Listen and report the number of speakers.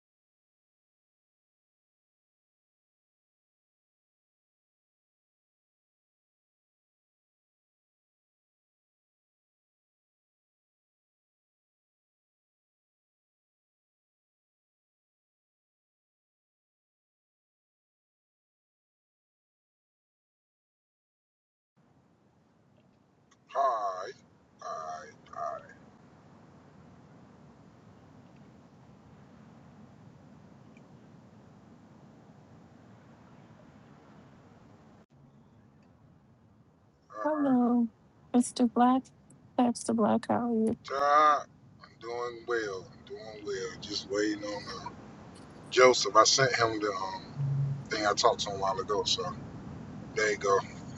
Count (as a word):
two